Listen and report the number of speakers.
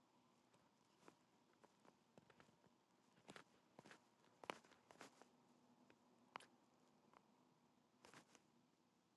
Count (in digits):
0